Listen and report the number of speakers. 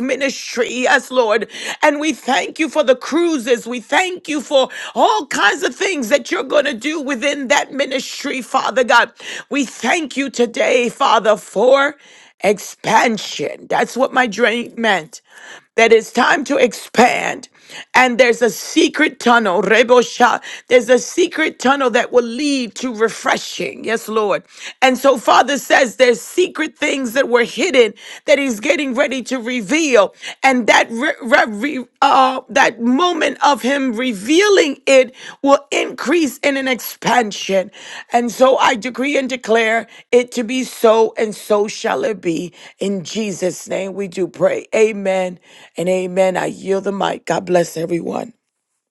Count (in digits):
1